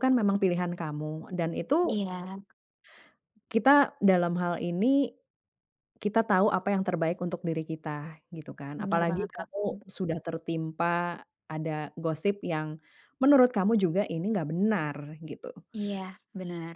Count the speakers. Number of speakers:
2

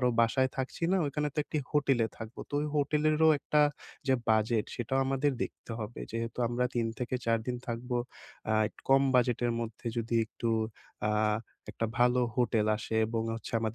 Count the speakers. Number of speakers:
1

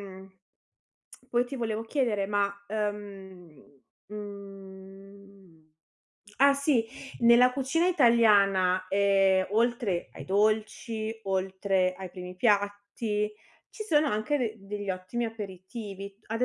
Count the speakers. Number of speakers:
1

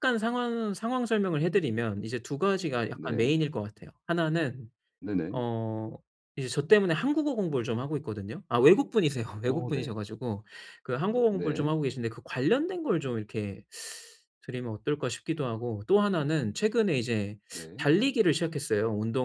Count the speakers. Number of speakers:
2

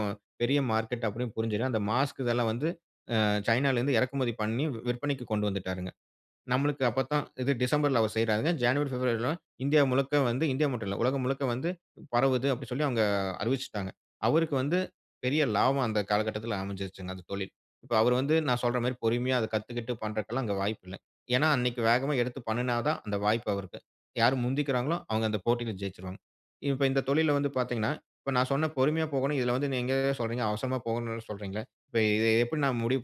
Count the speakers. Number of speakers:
1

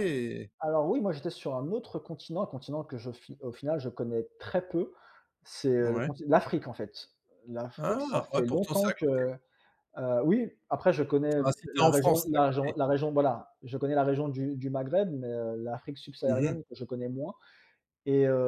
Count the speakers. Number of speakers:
2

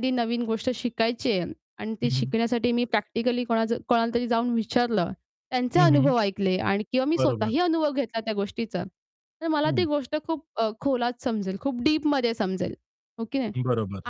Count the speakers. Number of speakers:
2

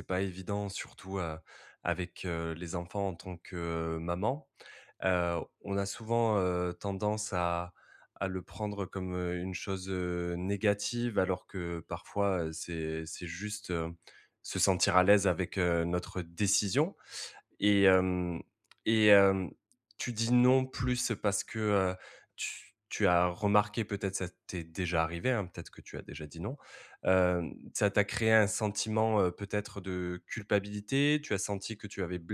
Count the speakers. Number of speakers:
1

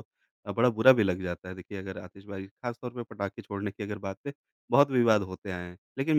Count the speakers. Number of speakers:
1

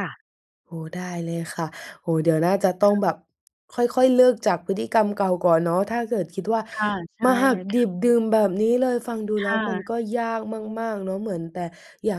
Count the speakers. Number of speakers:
2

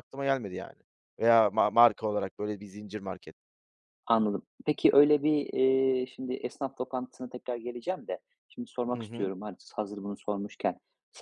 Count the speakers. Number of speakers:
2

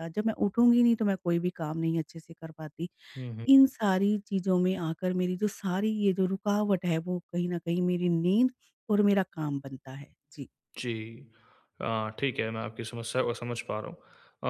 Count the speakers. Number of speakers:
2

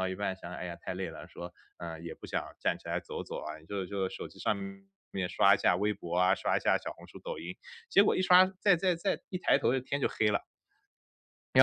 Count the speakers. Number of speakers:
1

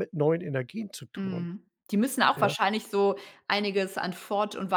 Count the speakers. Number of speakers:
2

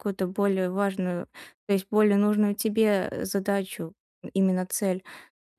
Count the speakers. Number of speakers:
1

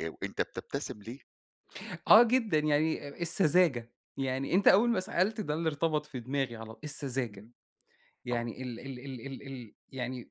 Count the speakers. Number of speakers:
2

